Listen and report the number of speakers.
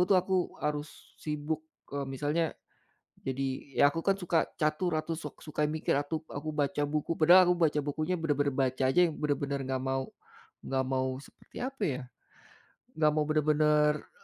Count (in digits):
1